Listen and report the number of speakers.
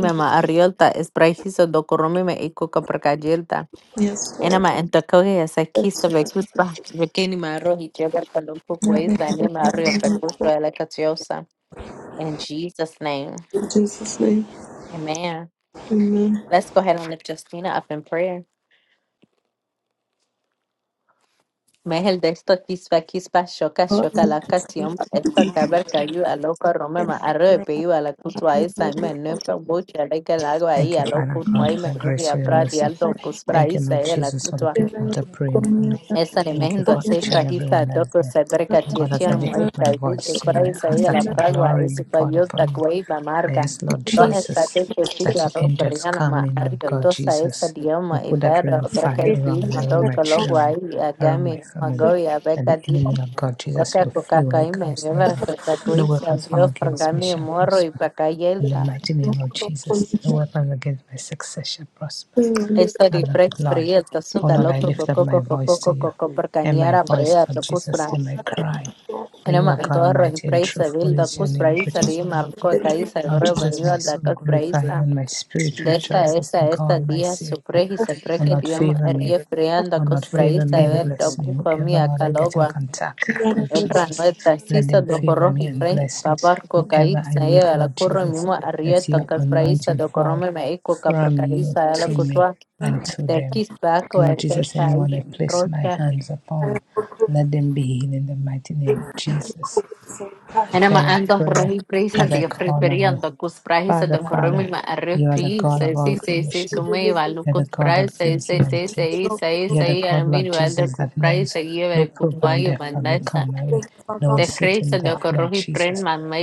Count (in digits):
3